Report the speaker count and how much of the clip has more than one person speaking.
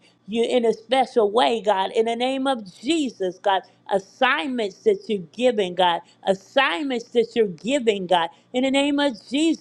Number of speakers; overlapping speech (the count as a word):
one, no overlap